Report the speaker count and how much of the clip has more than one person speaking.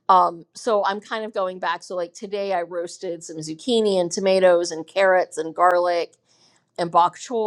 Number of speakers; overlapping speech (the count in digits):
1, no overlap